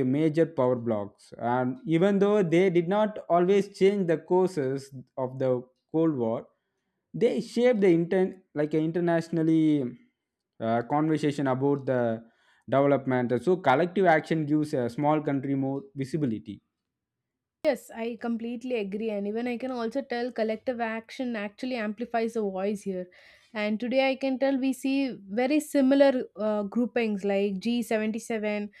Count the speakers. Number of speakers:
2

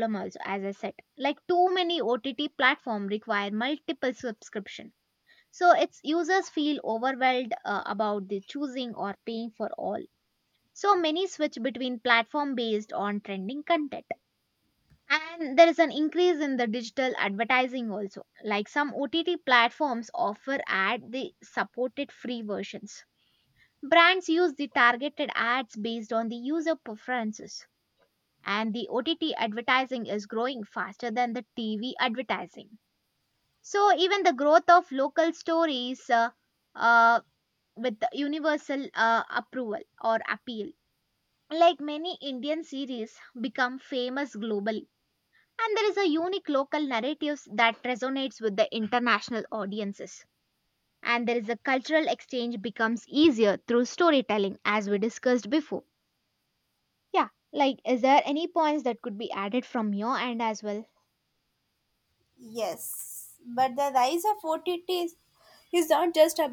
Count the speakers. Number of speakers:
2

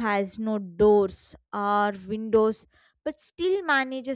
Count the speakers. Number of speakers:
1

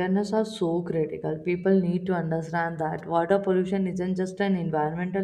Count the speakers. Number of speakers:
1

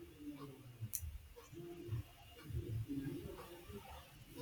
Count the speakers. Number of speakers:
0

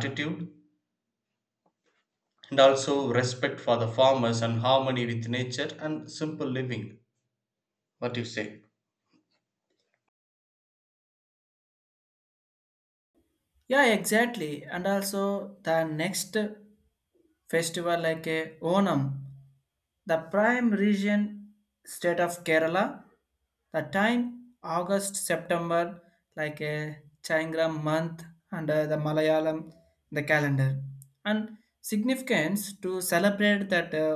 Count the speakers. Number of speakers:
2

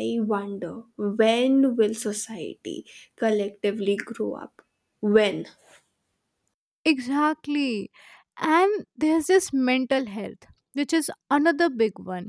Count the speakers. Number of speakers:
2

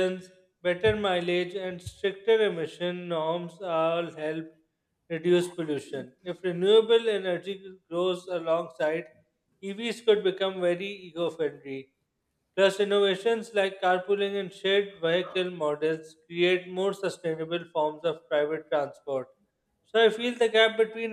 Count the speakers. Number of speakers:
1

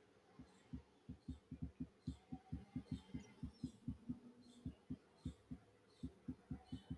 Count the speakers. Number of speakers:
0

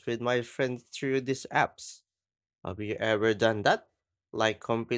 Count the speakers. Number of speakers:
1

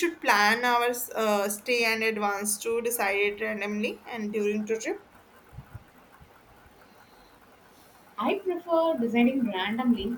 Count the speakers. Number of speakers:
2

